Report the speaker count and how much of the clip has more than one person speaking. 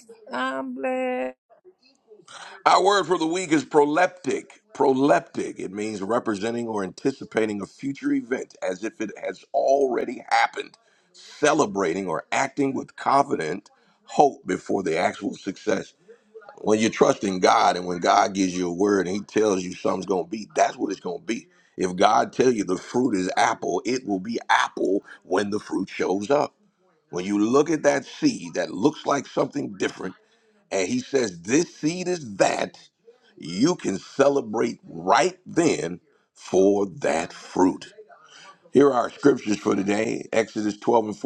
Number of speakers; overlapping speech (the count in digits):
2, no overlap